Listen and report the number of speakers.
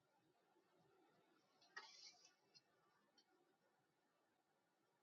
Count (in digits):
0